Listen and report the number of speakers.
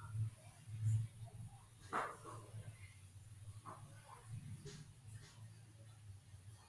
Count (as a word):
zero